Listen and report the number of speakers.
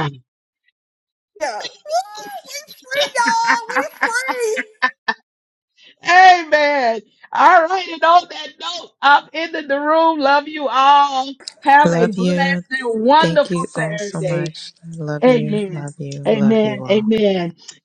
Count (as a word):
three